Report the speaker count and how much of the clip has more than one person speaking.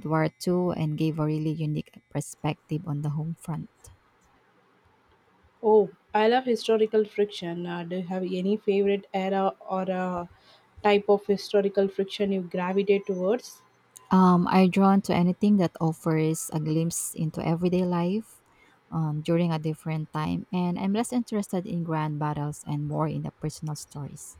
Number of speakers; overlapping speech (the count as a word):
two, no overlap